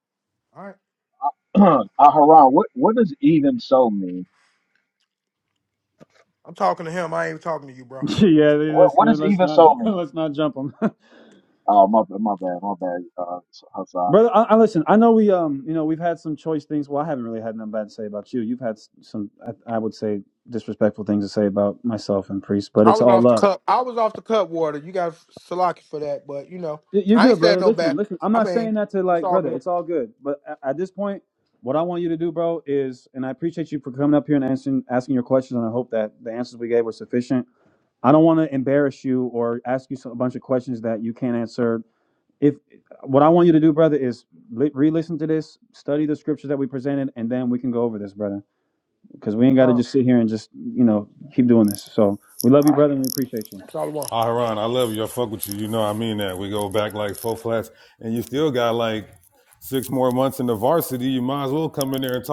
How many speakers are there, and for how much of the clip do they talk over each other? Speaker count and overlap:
4, about 7%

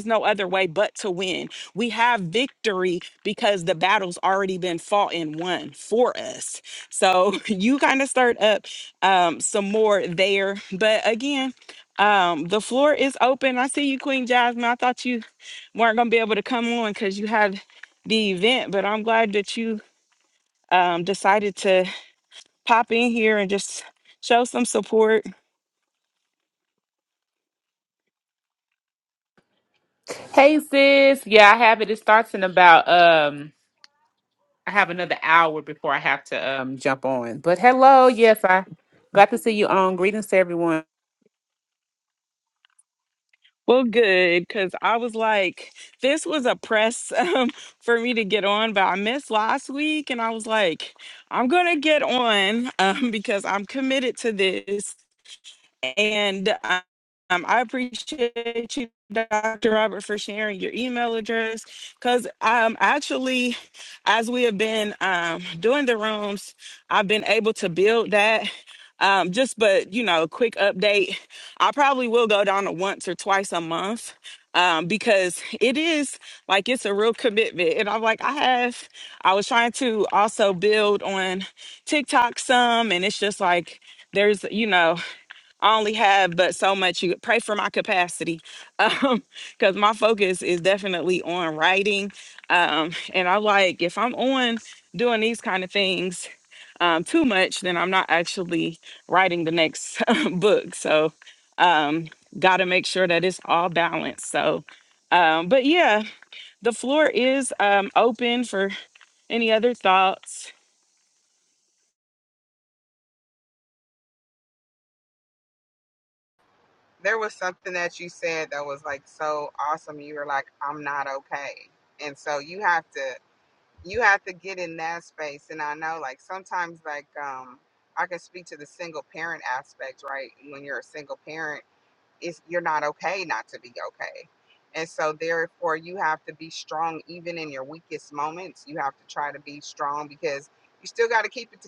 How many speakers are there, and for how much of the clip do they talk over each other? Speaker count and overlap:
3, no overlap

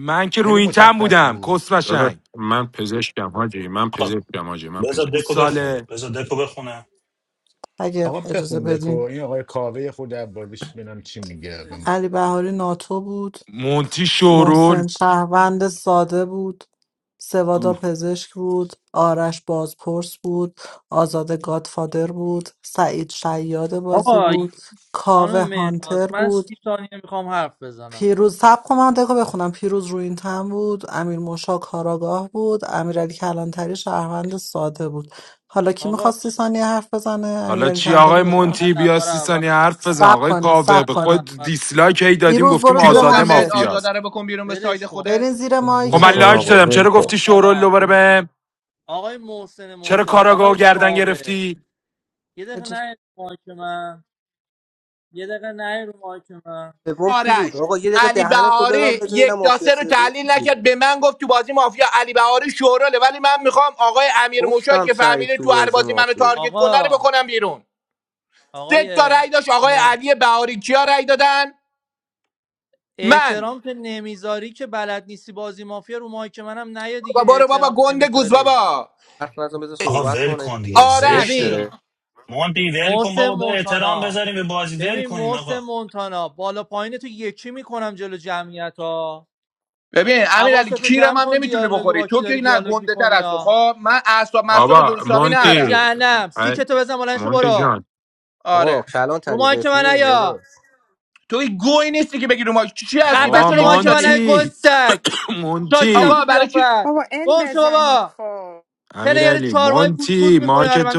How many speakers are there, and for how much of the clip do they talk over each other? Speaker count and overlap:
9, about 36%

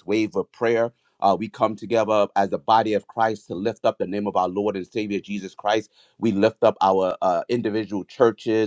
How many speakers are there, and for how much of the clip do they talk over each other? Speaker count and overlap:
1, no overlap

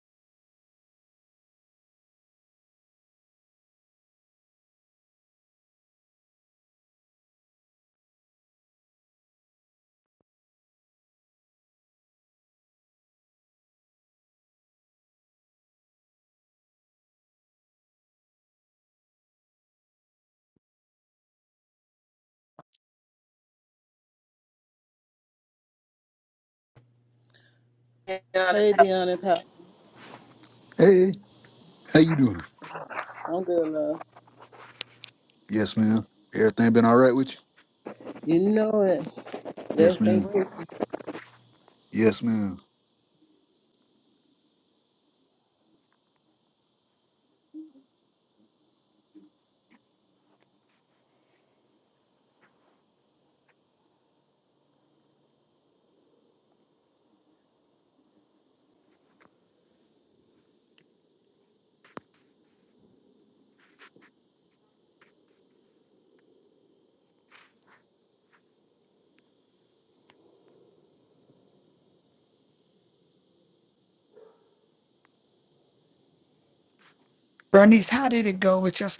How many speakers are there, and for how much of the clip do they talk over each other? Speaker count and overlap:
3, about 1%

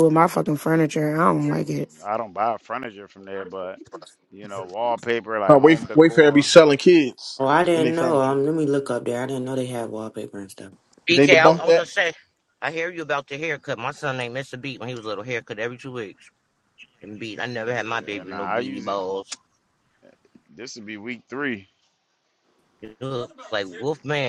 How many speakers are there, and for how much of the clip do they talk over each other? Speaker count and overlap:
5, about 15%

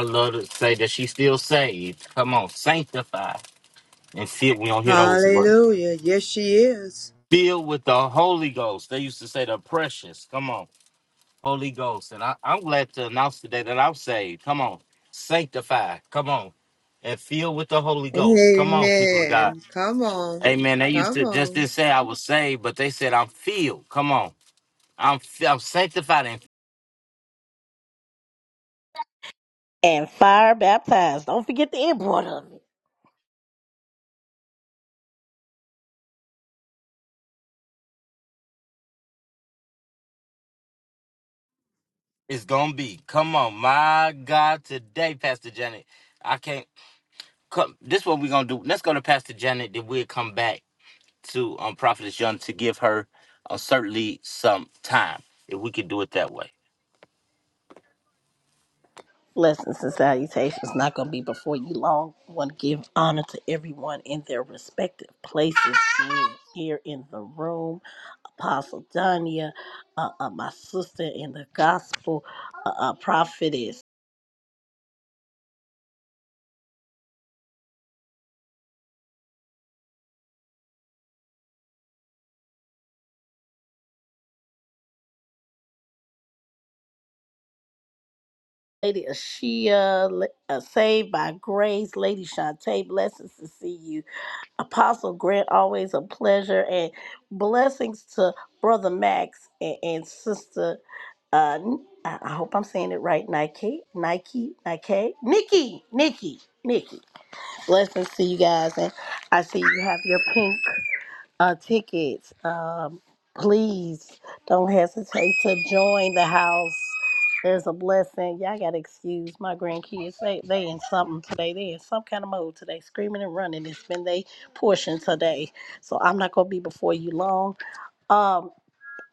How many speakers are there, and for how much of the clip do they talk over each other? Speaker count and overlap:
3, about 2%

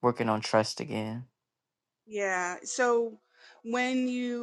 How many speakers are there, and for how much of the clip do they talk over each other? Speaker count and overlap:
2, no overlap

